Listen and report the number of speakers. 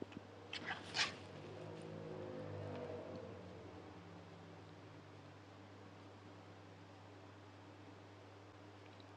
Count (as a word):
zero